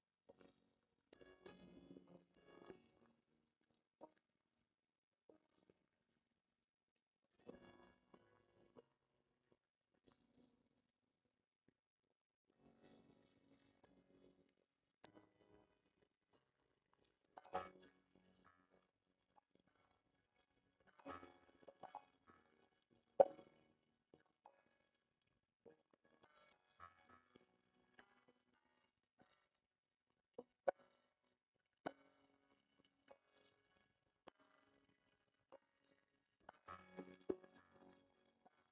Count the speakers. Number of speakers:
0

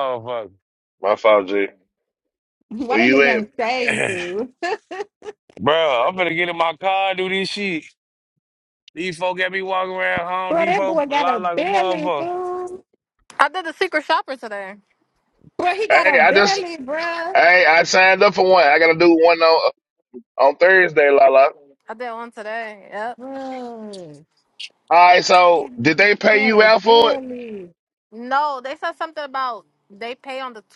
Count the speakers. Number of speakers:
4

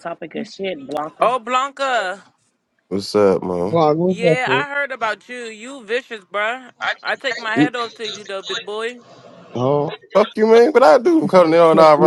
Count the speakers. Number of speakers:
4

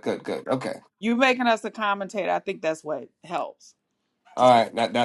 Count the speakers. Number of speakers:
2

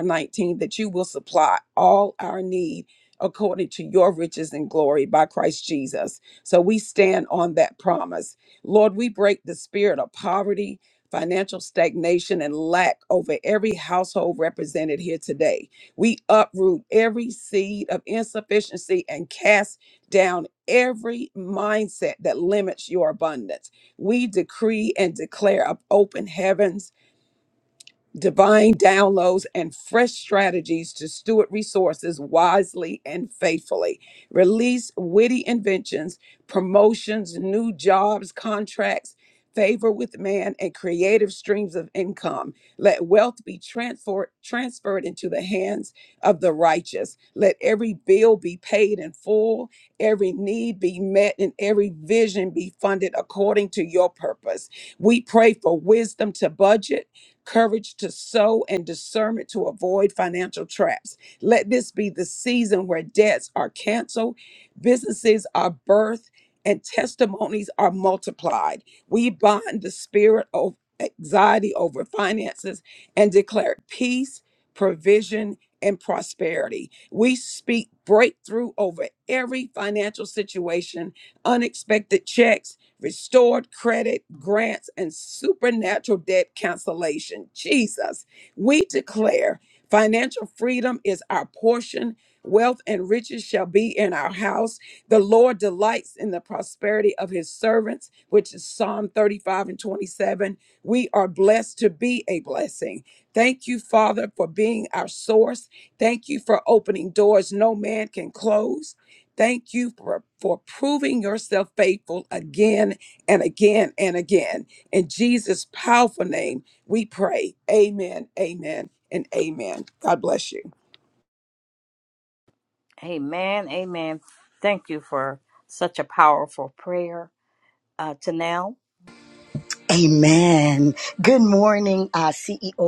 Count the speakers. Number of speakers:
3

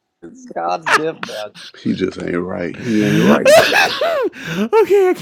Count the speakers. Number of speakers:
3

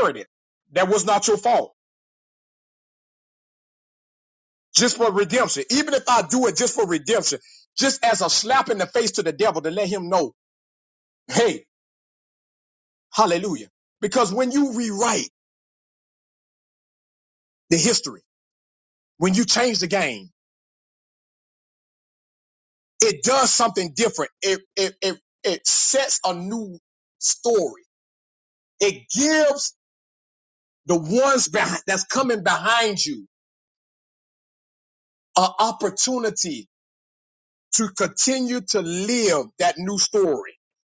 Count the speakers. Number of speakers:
1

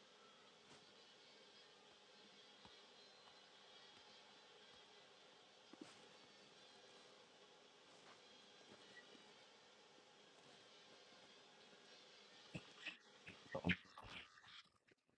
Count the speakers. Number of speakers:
0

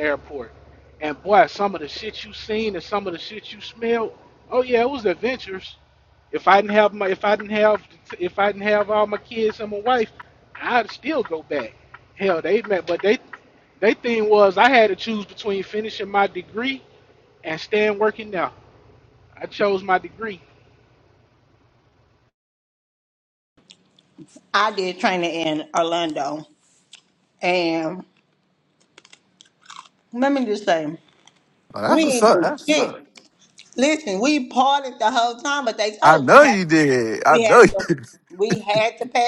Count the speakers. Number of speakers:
3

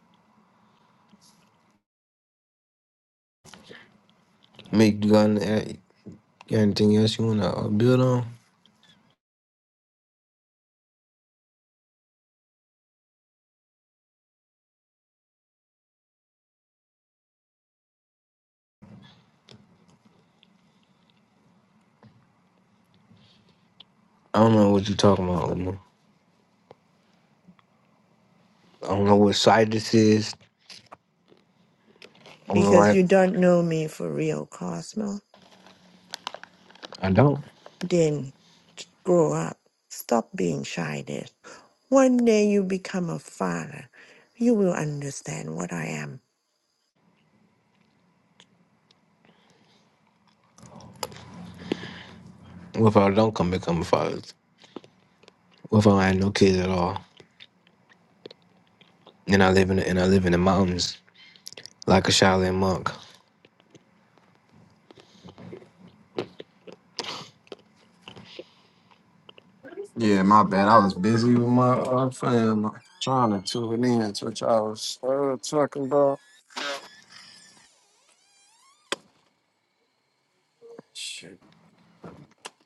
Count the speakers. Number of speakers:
3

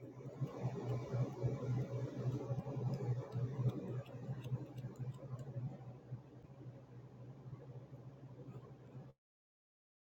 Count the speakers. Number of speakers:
0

